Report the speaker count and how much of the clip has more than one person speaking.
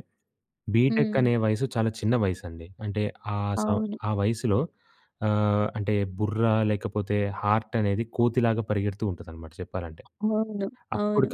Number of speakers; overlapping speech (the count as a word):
two, about 11%